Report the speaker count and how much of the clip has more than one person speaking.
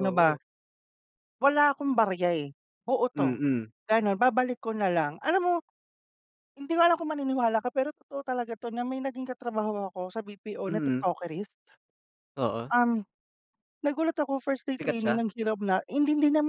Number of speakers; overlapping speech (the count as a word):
two, about 8%